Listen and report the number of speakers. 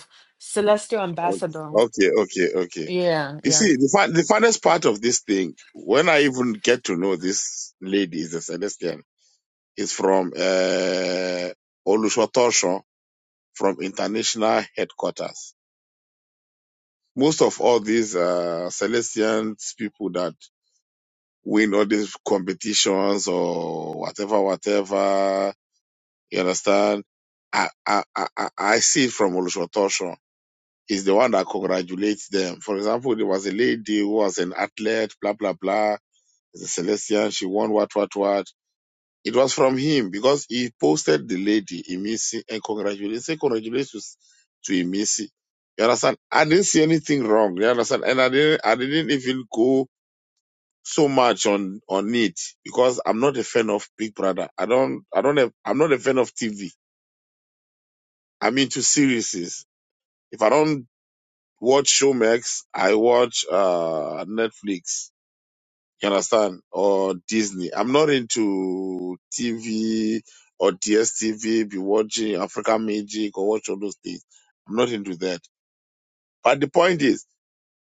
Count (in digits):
2